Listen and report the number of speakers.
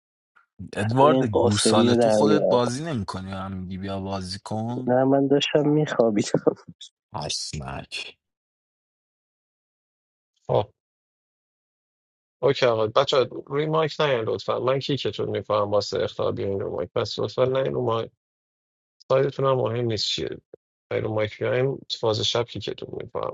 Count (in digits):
3